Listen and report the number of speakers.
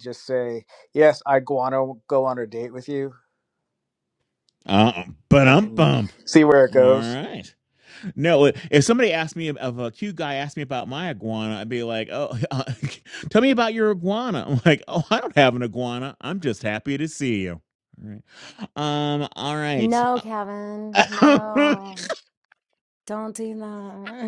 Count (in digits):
3